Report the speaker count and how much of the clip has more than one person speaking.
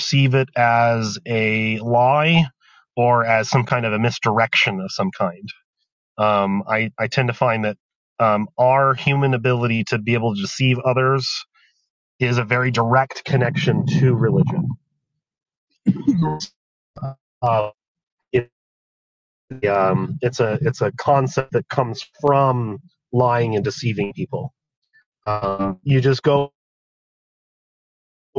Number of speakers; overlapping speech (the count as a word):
one, no overlap